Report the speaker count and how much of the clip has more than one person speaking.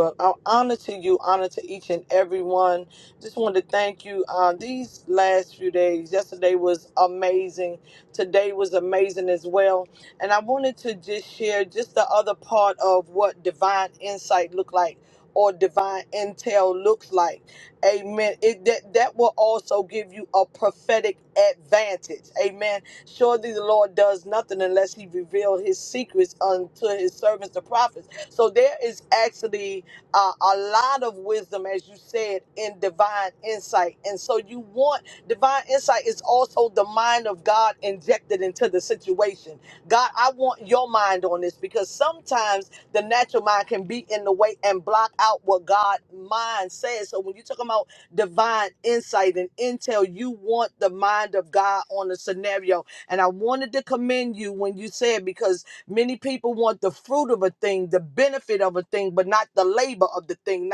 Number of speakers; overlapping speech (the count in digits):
1, no overlap